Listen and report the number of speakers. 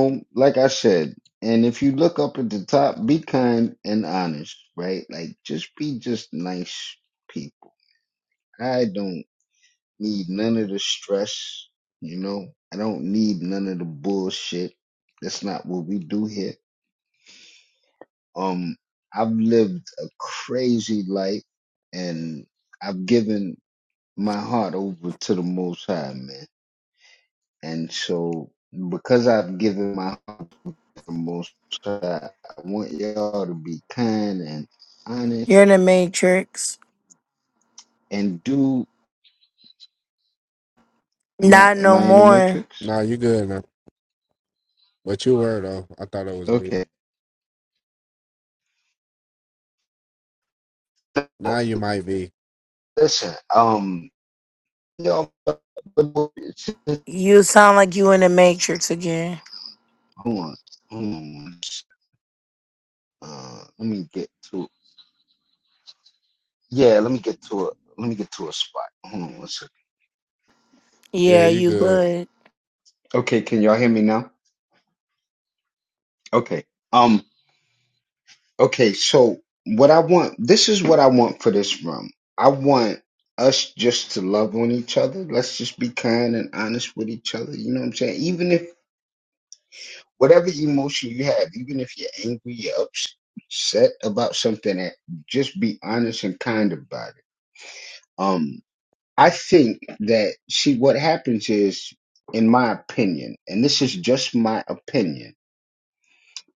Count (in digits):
3